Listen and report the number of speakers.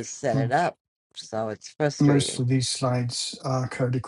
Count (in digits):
2